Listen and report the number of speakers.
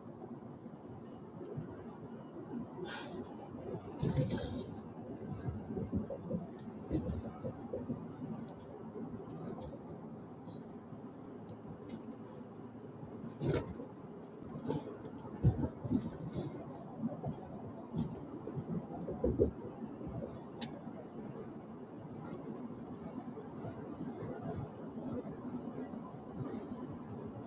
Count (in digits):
0